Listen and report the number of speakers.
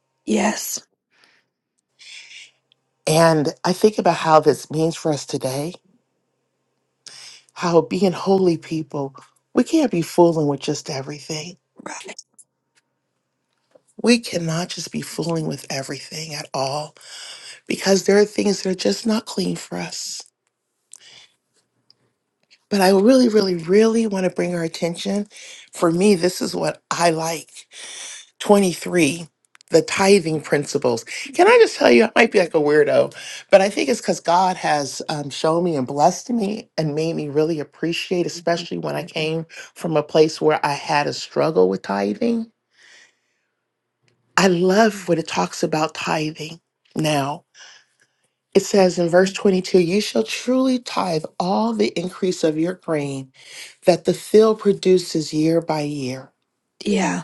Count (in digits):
2